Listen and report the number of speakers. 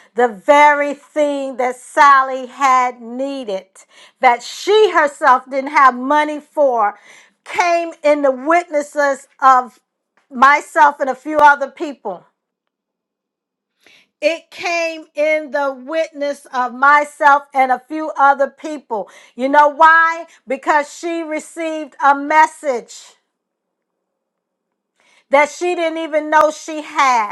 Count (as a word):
one